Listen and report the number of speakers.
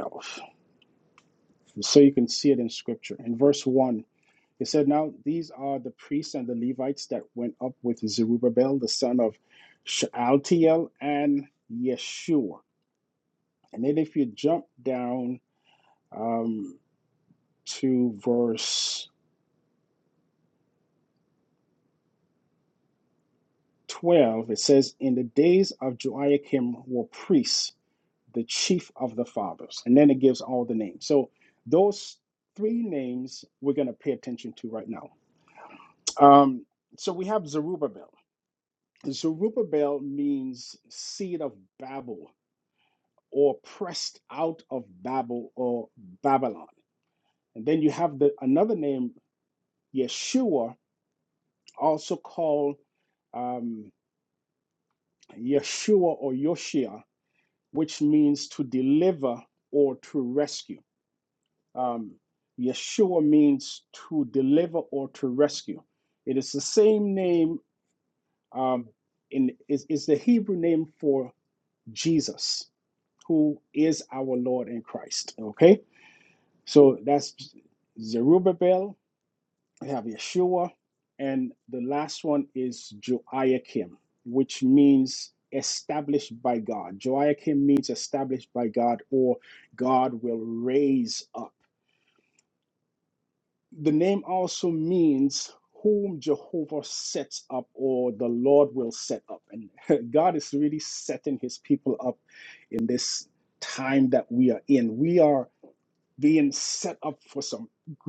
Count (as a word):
one